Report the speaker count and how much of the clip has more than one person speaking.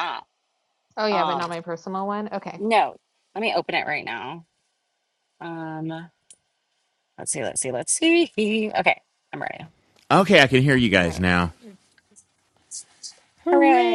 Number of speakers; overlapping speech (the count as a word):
three, about 7%